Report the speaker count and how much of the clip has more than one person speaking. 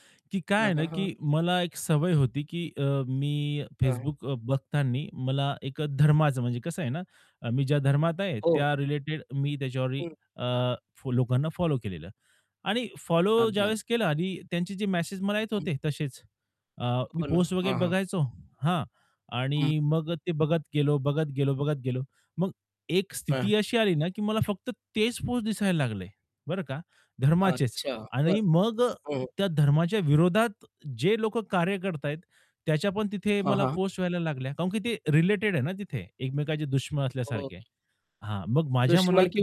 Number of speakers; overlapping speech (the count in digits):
2, about 11%